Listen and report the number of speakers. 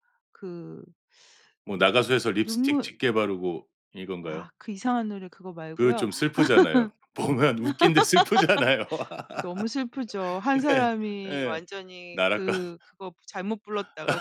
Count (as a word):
two